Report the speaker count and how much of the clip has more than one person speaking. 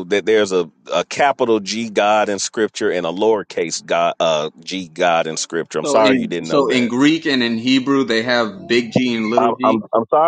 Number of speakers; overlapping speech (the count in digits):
2, about 15%